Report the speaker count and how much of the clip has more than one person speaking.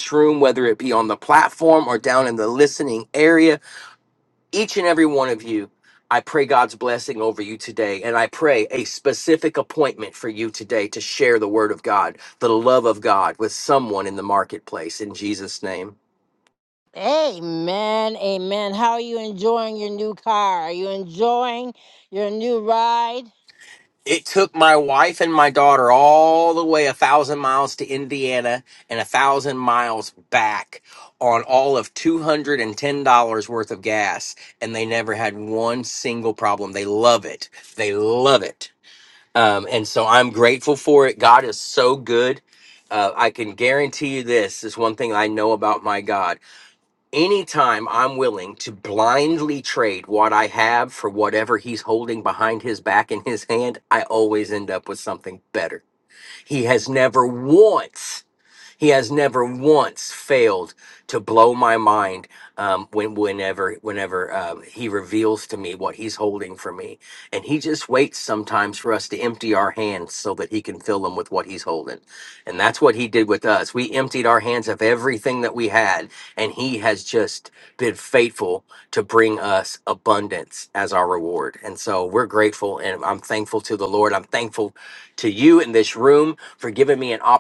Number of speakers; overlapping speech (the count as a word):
two, no overlap